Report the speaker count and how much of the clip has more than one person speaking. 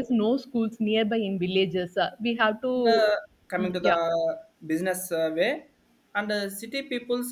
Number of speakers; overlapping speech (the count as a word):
two, about 9%